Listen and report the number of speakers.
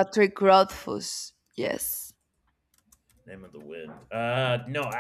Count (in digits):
2